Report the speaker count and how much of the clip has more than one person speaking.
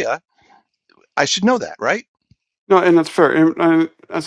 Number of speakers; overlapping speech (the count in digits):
2, no overlap